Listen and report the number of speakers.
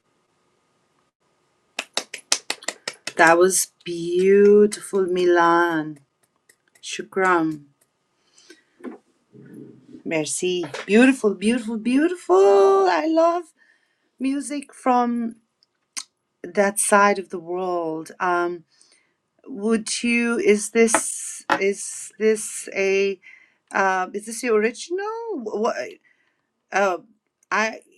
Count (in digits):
1